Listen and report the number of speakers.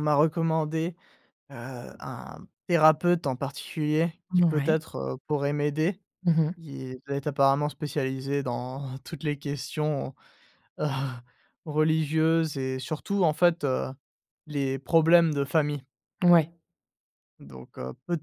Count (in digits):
2